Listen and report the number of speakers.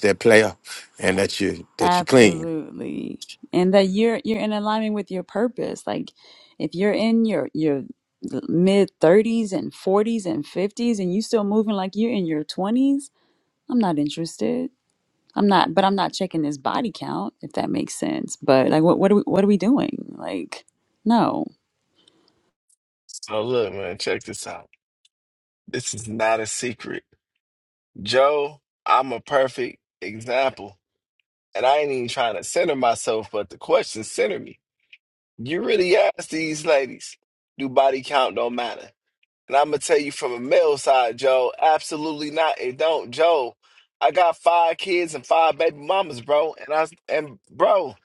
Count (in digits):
3